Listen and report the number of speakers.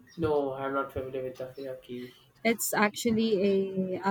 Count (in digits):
2